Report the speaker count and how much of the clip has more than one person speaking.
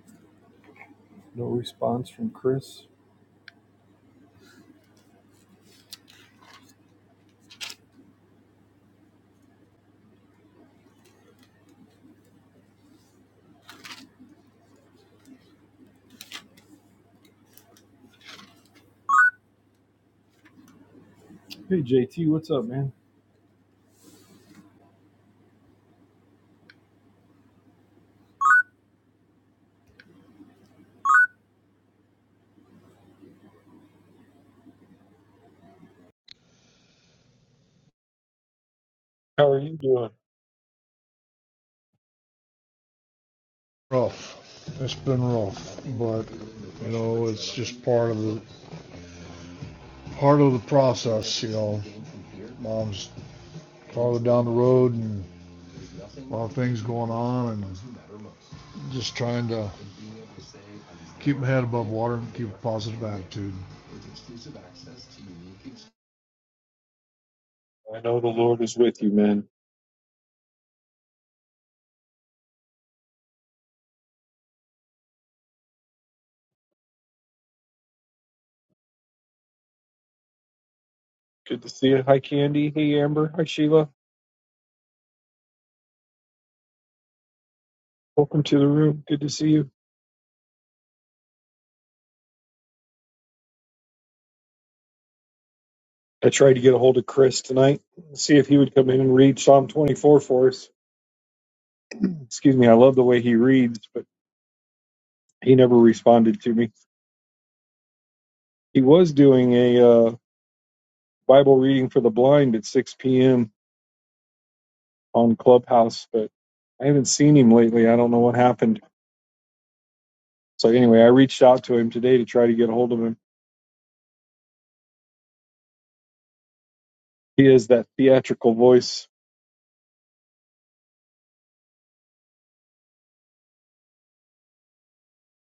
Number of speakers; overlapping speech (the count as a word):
two, no overlap